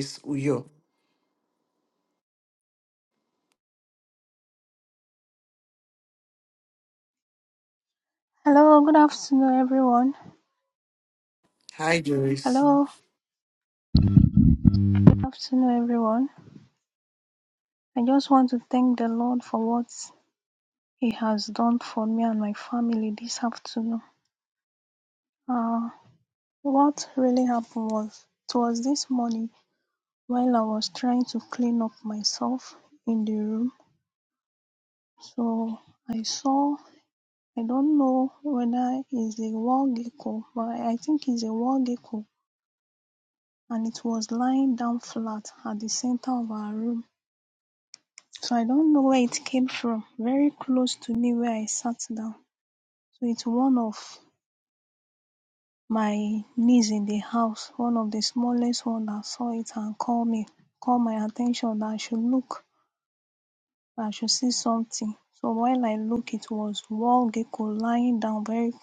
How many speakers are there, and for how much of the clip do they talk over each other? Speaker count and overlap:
2, under 1%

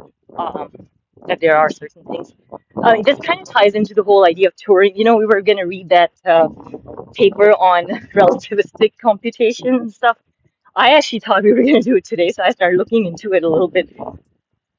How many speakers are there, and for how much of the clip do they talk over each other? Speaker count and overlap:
1, no overlap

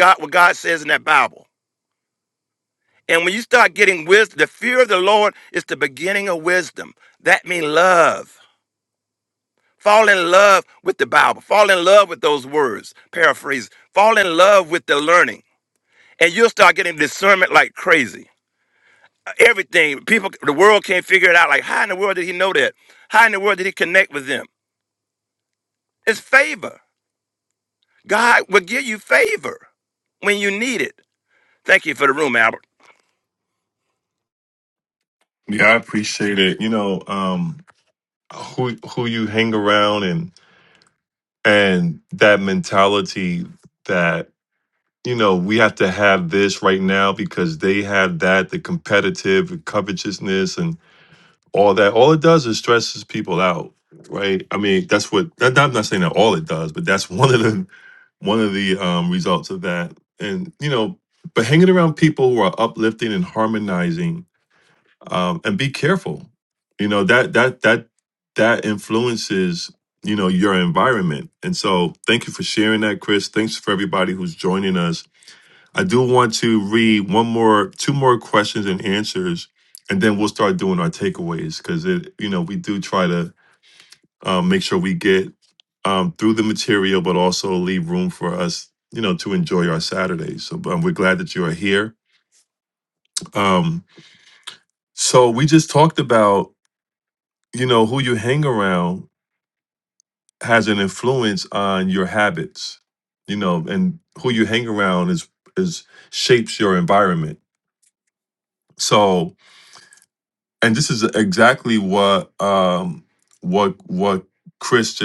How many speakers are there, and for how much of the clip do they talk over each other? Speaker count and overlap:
2, no overlap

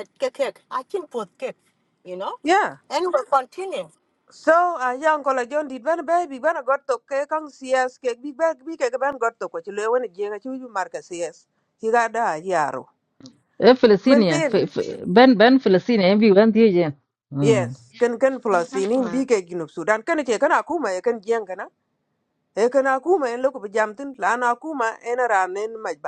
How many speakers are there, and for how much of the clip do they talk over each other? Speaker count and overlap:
3, about 1%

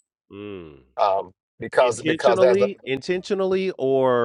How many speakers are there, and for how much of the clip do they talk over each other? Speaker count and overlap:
2, about 21%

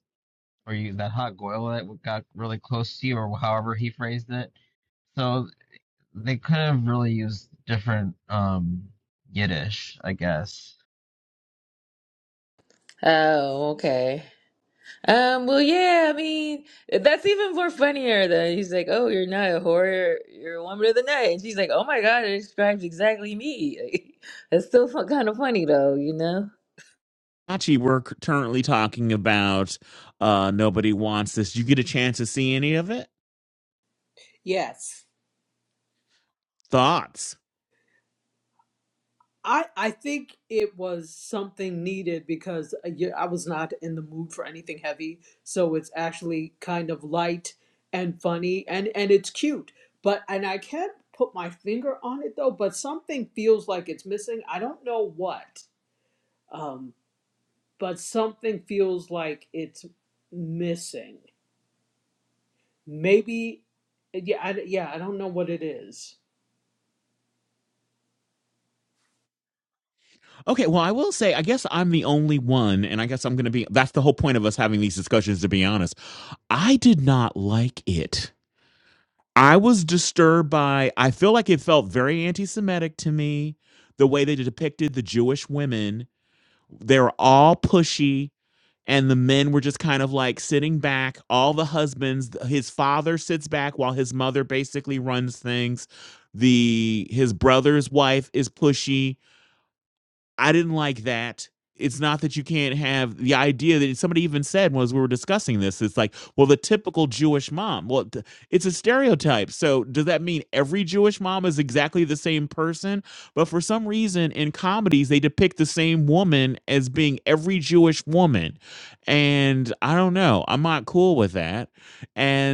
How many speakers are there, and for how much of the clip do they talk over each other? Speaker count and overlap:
4, no overlap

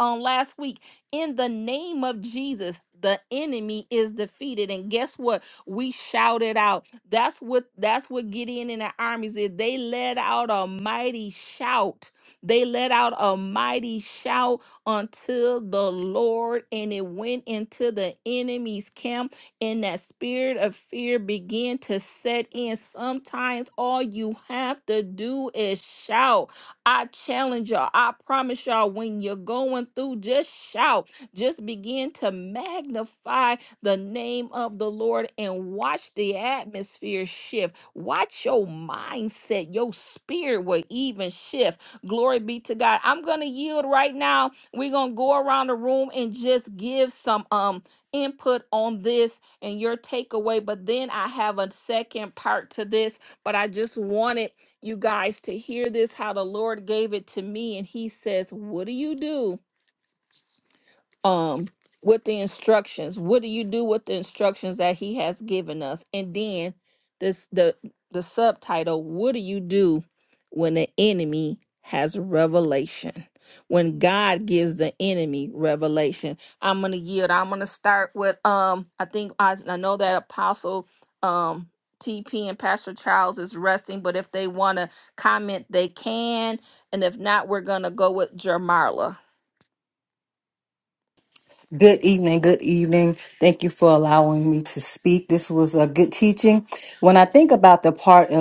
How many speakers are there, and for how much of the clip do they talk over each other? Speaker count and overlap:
2, no overlap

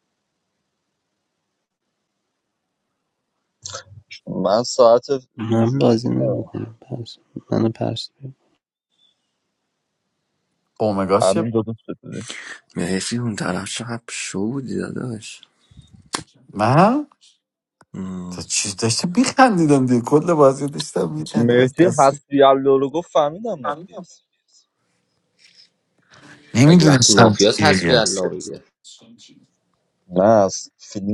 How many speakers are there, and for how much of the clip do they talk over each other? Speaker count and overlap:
5, about 9%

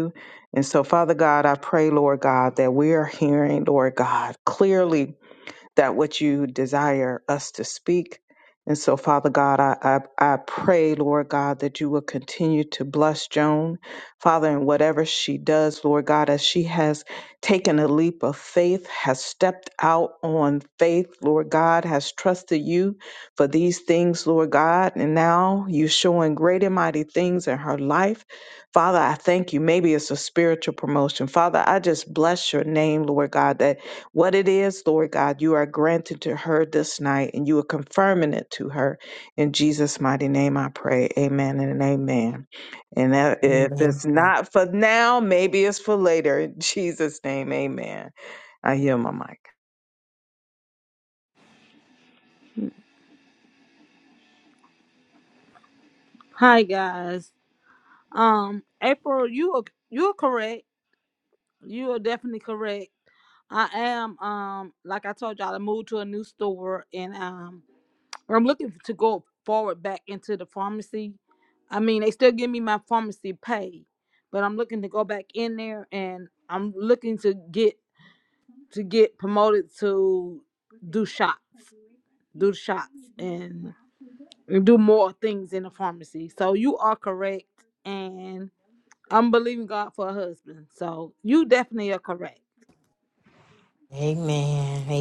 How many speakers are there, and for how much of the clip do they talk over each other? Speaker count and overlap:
3, about 1%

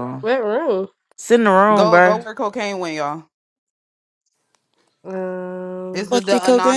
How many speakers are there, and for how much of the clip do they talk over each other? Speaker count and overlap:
3, about 20%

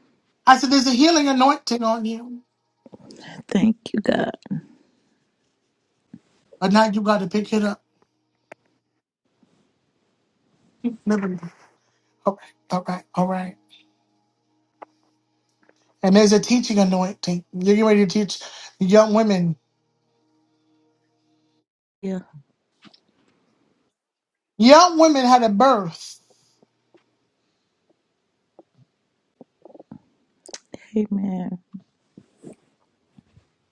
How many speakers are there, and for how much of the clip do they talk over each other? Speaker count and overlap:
2, no overlap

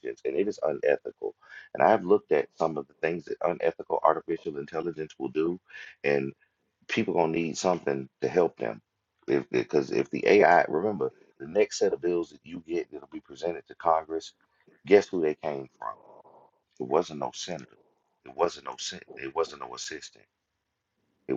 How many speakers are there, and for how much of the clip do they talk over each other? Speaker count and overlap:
1, no overlap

